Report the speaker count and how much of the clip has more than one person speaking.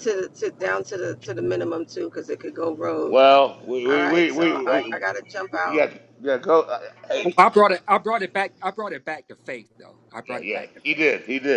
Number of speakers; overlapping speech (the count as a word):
three, about 21%